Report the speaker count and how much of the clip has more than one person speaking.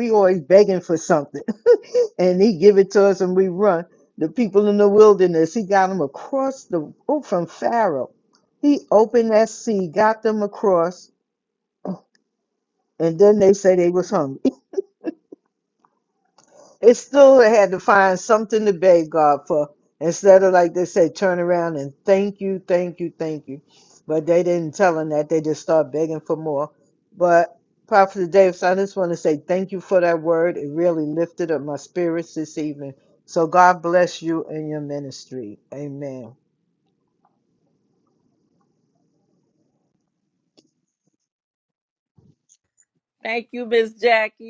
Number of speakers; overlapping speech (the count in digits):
2, no overlap